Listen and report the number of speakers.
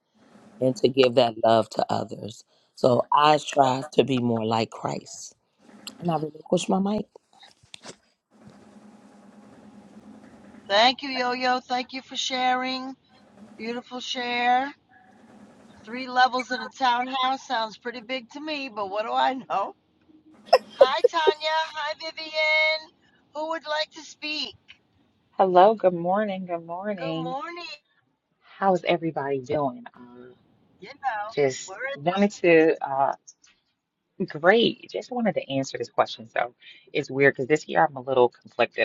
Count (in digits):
3